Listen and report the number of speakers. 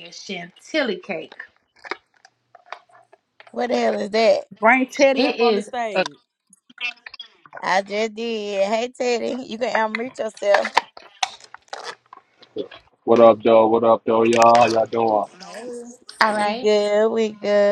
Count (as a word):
four